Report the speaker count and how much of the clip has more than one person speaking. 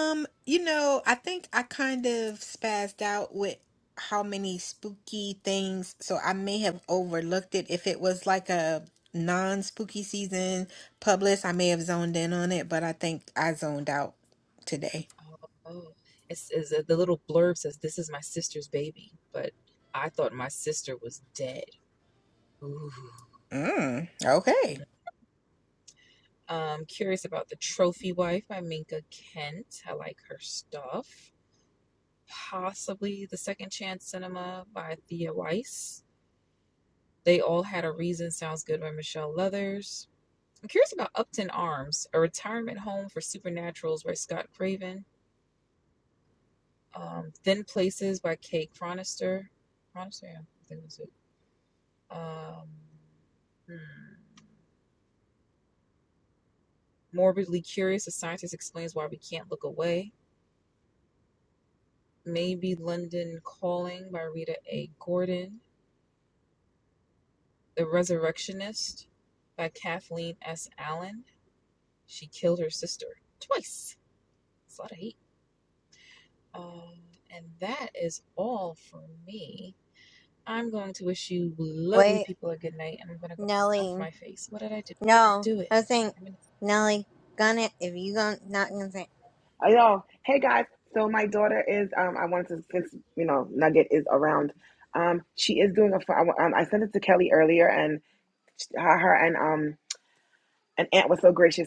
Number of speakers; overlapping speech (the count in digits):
4, about 1%